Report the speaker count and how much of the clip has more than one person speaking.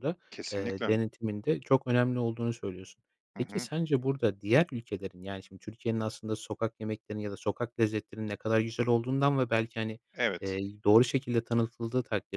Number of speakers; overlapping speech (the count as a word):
two, about 6%